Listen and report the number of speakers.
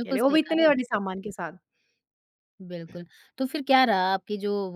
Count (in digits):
2